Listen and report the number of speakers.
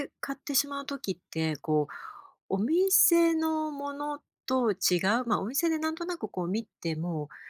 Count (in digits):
1